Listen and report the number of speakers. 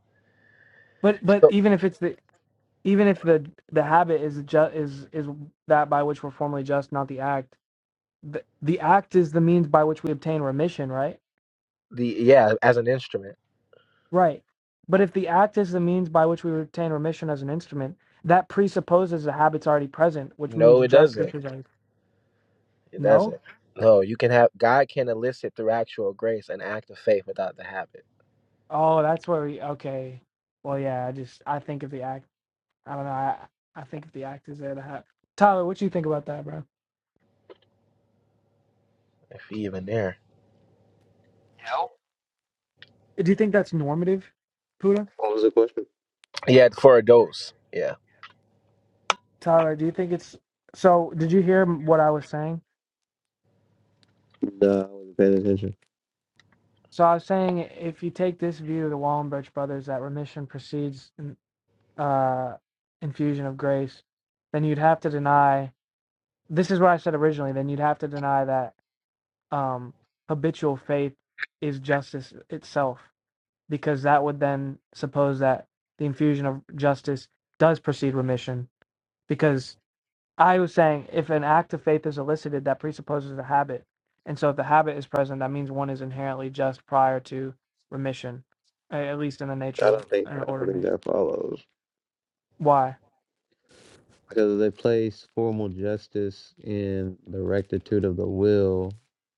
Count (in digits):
3